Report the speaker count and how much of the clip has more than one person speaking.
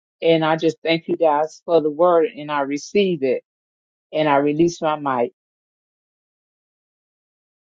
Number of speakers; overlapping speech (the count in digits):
1, no overlap